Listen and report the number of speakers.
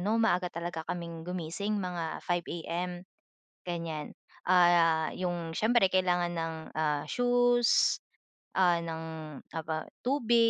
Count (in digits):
1